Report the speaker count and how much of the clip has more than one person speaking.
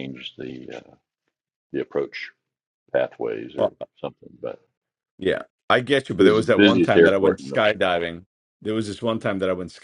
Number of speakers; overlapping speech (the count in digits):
2, about 15%